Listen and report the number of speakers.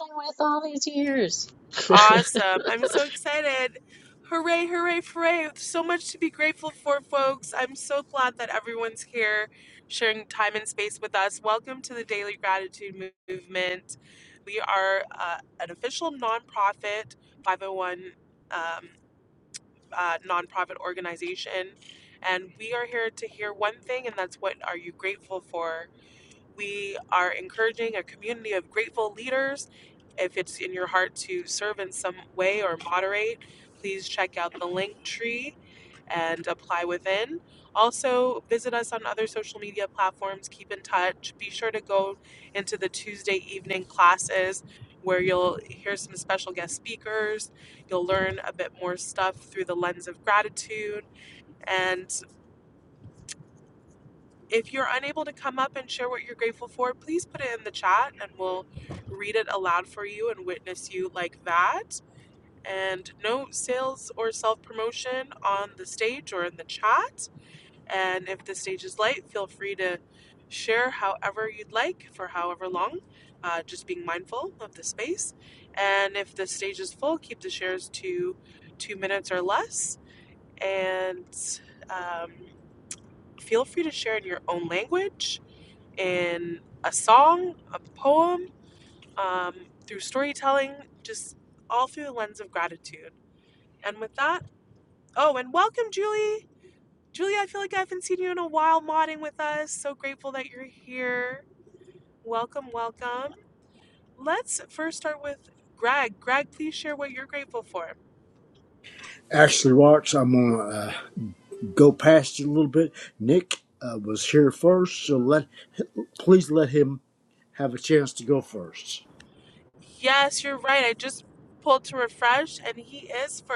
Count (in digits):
3